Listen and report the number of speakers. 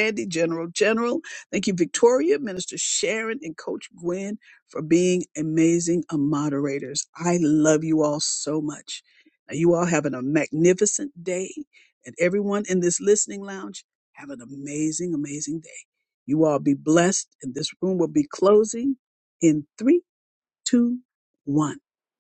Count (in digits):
1